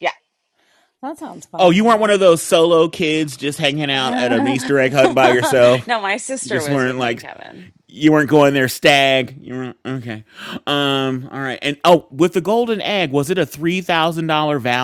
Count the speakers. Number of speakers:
3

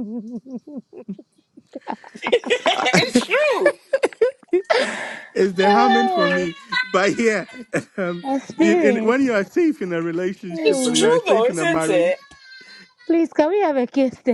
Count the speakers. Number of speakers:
3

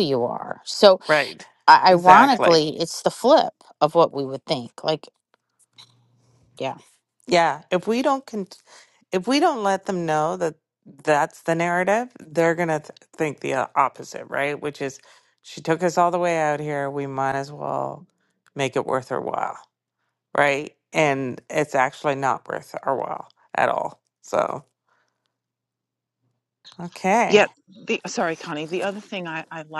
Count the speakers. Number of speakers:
3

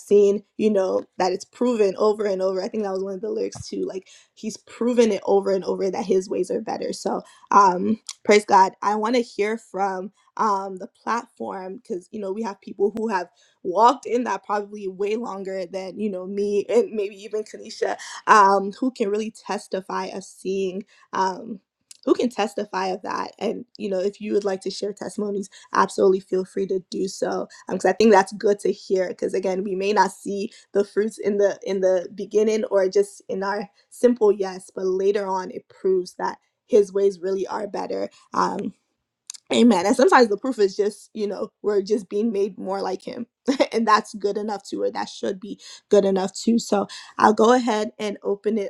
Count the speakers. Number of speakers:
1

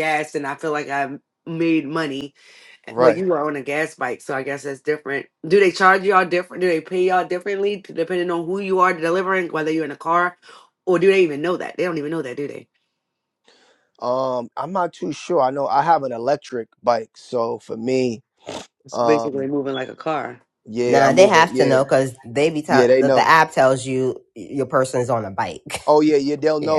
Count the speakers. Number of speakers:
3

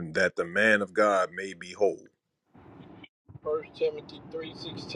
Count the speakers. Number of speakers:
2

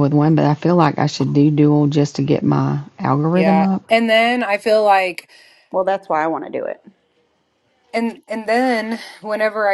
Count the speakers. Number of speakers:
3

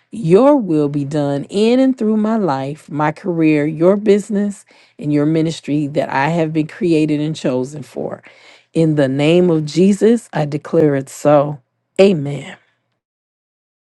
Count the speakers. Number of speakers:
1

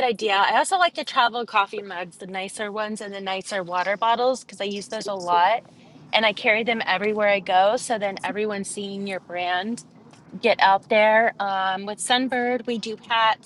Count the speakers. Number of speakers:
1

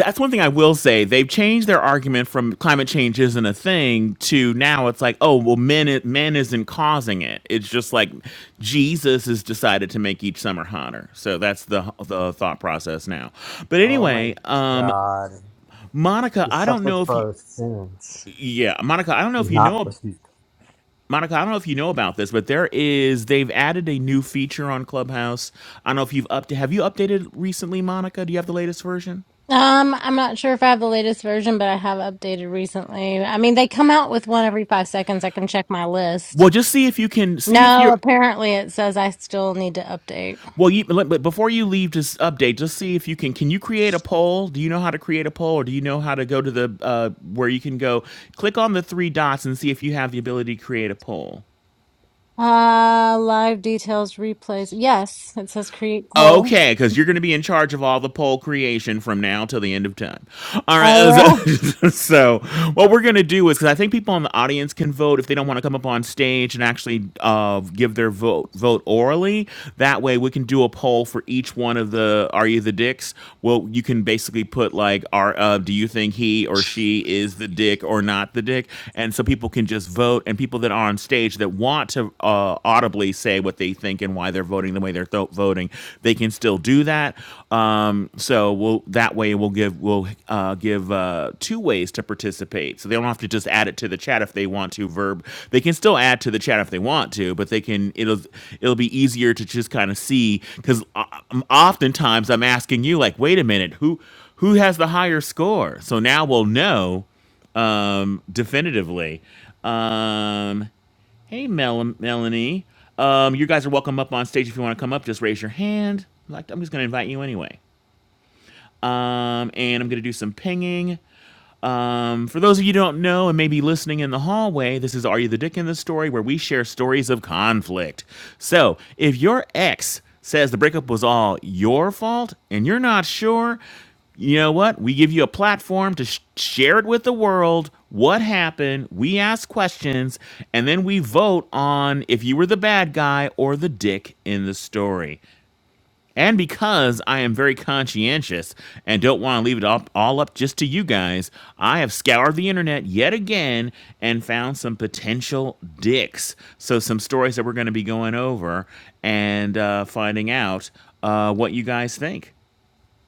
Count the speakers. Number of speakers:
3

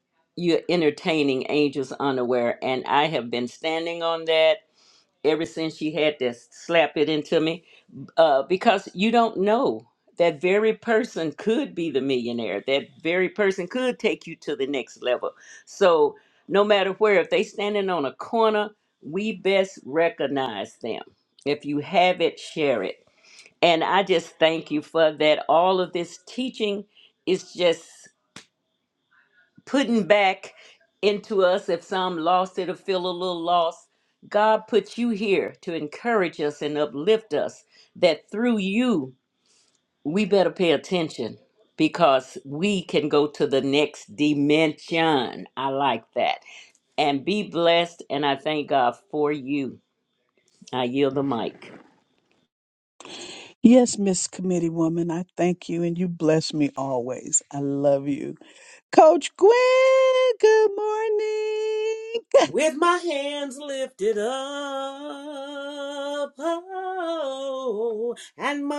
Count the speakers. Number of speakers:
3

